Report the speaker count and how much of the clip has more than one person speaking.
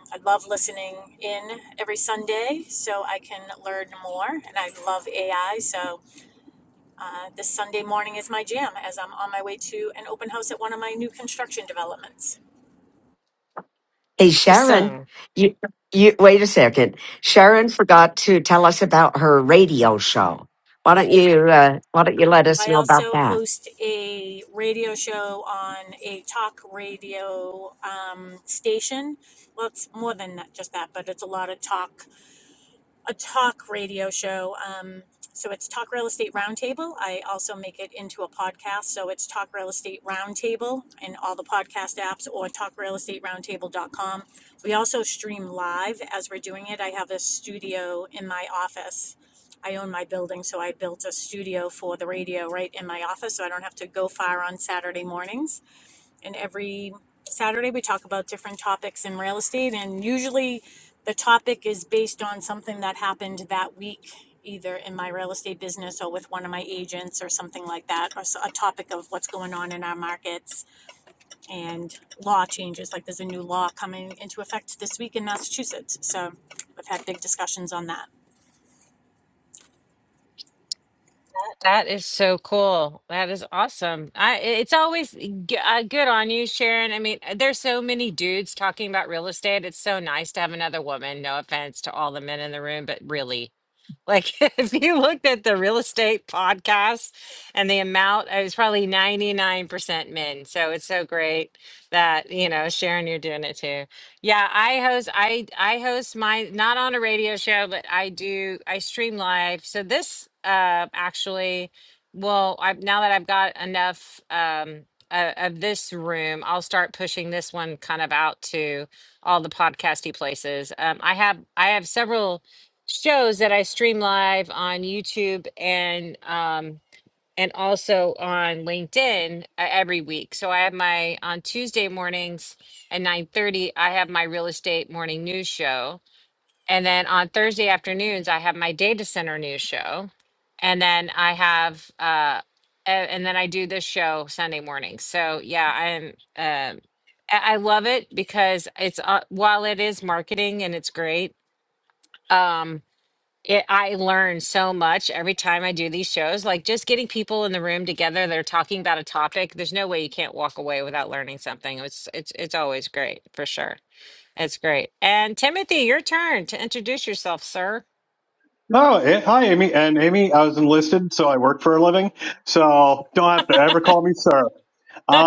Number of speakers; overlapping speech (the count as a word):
four, about 1%